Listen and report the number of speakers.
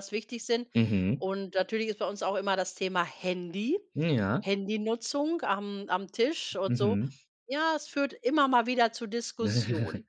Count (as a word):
two